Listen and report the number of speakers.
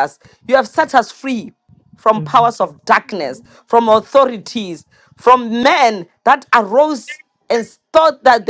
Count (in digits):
1